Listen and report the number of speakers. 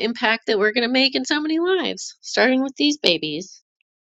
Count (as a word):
one